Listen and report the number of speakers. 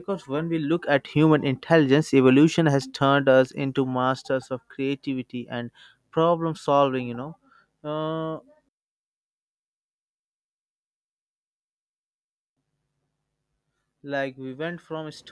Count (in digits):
1